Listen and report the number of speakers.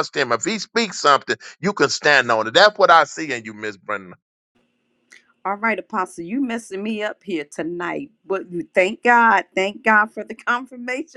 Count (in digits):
2